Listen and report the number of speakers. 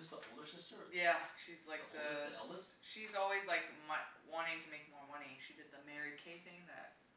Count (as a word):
two